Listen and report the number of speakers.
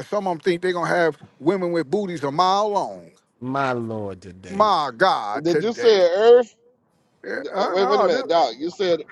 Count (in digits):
3